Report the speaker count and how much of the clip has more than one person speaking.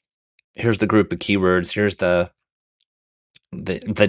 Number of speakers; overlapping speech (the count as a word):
one, no overlap